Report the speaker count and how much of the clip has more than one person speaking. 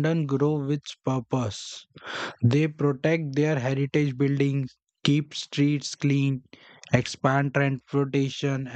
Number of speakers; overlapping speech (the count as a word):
one, no overlap